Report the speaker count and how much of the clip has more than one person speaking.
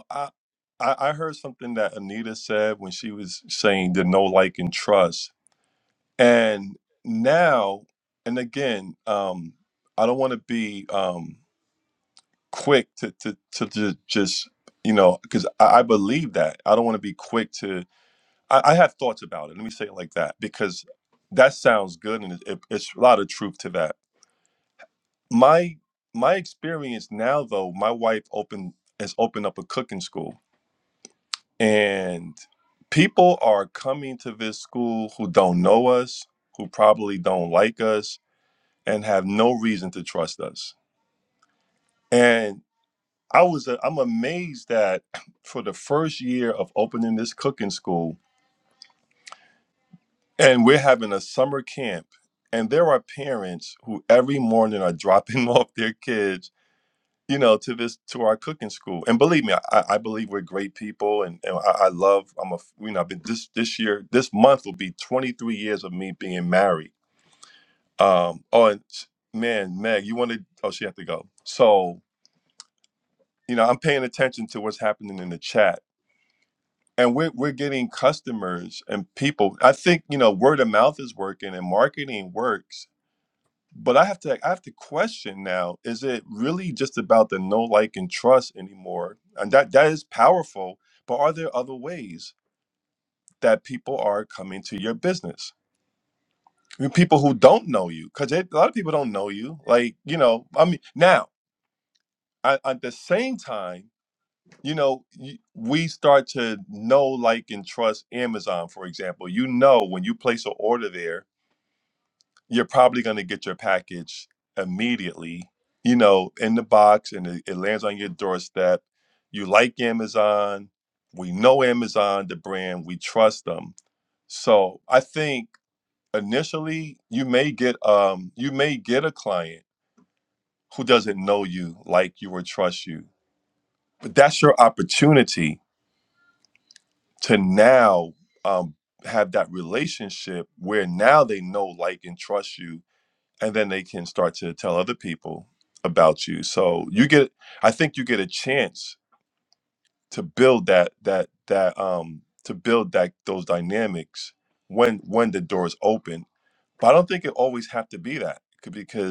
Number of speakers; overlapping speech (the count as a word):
one, no overlap